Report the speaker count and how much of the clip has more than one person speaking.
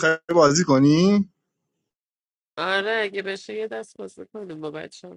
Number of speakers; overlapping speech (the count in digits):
2, no overlap